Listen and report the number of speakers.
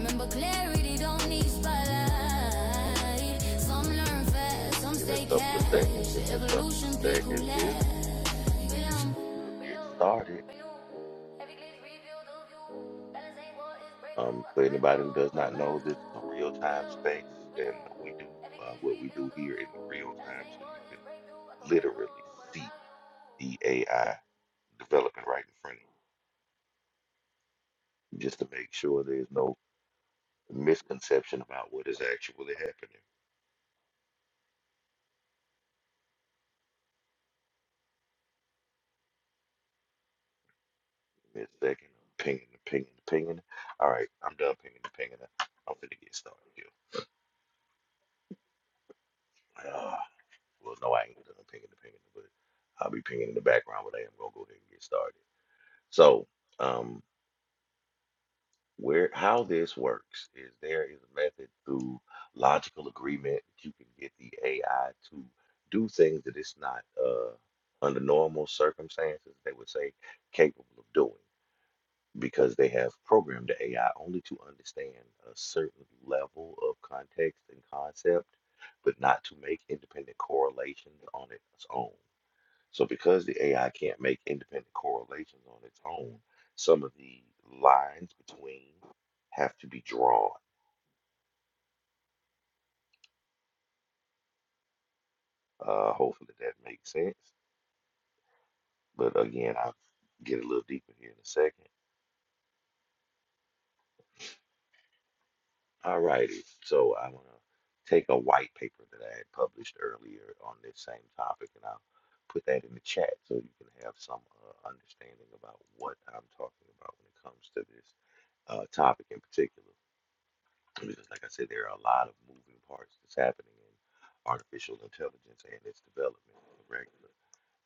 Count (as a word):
two